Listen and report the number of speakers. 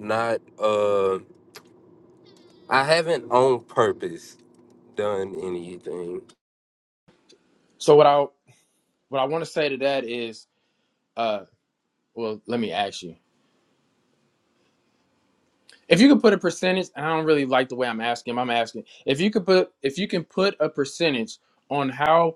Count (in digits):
2